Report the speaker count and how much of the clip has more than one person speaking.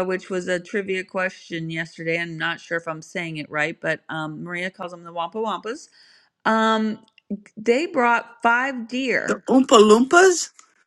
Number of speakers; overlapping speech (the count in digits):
2, about 1%